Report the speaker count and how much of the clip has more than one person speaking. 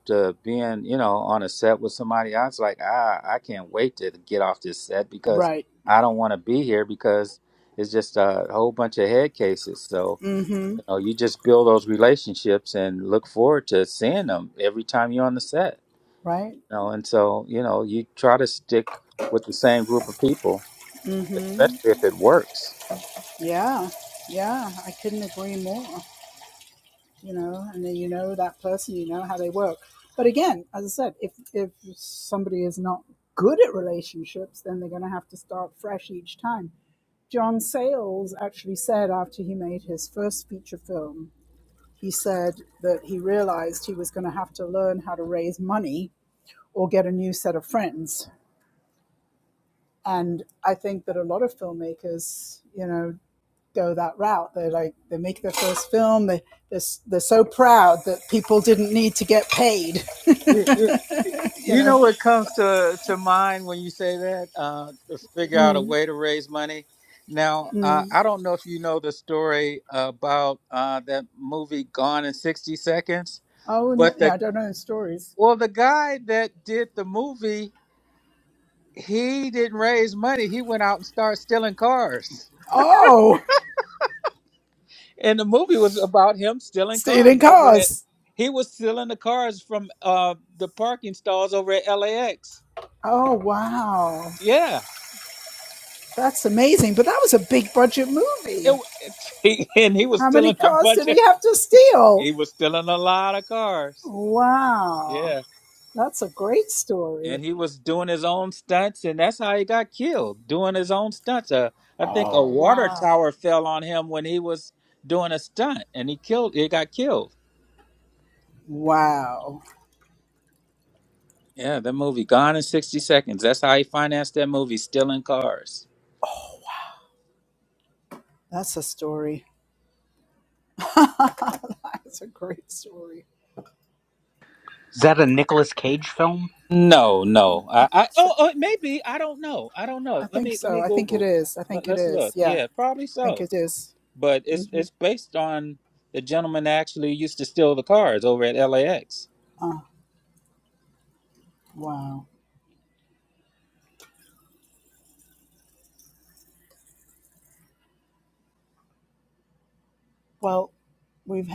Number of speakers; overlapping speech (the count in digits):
3, about 5%